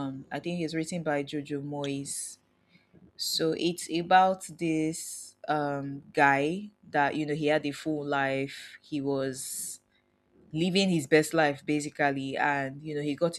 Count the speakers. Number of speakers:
1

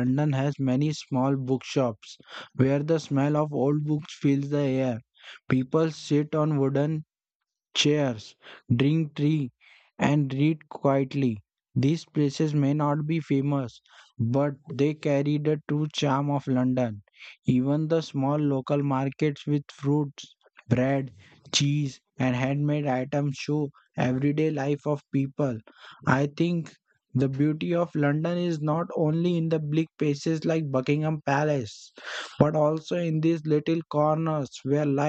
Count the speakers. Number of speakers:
1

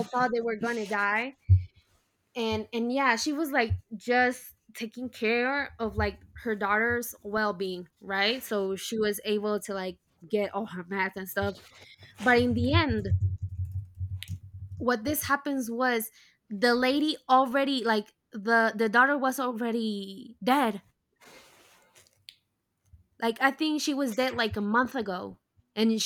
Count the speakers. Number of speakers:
1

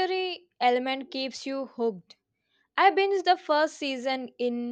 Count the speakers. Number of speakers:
1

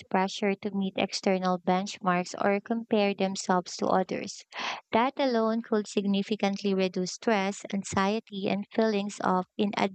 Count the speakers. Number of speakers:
1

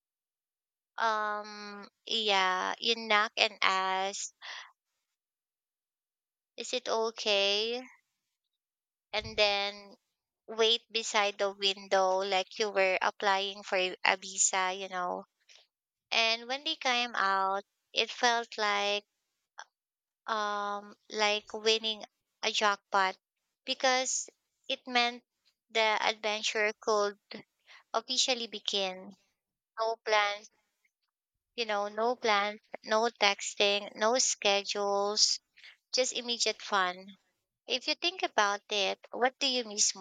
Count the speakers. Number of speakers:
1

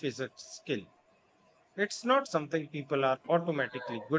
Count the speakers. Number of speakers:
1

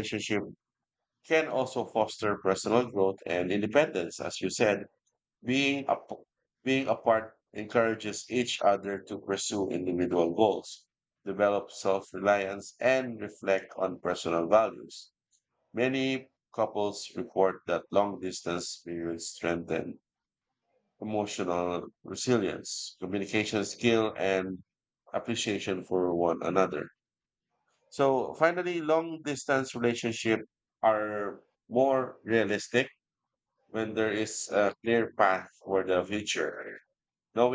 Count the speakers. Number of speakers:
1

